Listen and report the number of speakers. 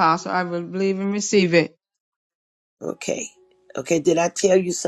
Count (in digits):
2